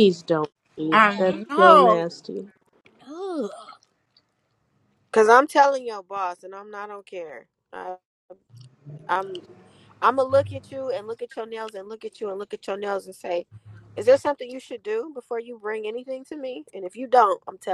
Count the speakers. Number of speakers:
3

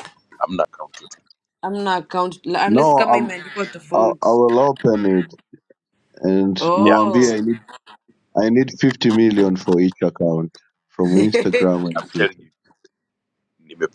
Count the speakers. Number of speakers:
3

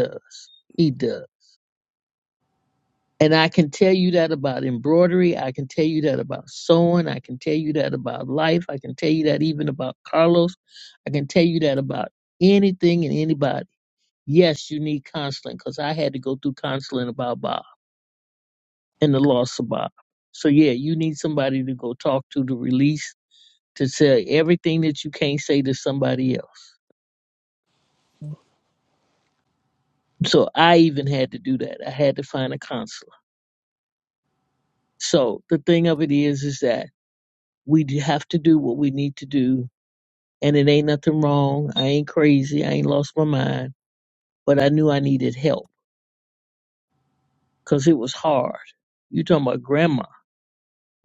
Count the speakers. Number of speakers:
1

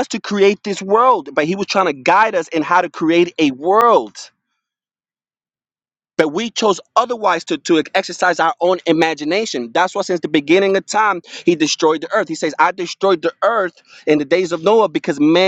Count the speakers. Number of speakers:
1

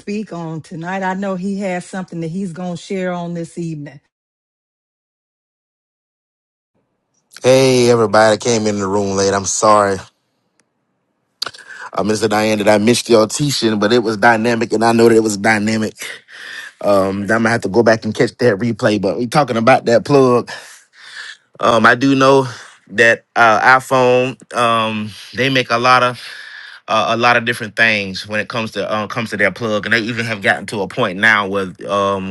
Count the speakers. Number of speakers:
2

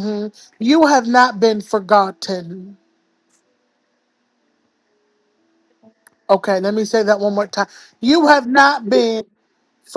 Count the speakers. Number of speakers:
1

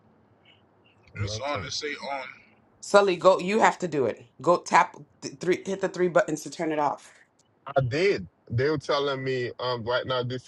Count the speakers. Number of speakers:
3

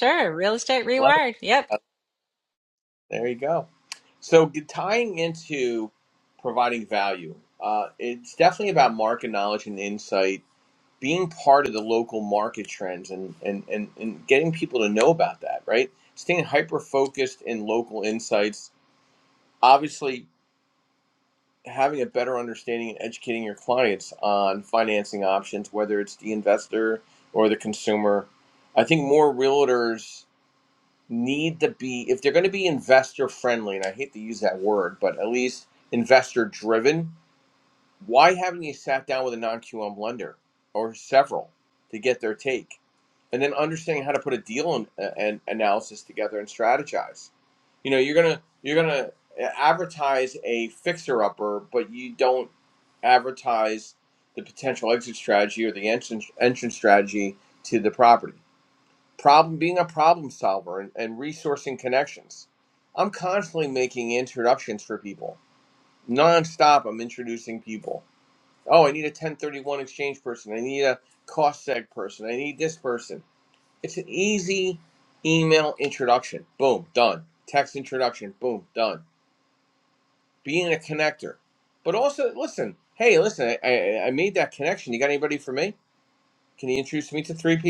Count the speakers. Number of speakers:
2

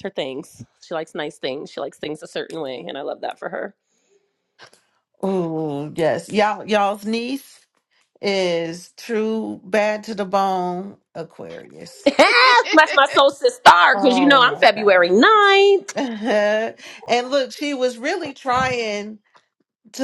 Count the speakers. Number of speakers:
2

